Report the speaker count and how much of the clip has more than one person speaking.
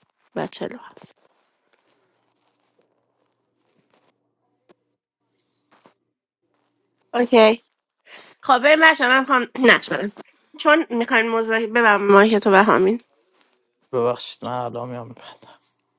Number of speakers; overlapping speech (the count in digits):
2, no overlap